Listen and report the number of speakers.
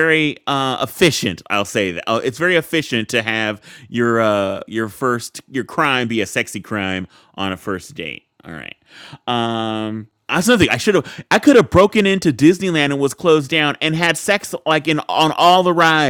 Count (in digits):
1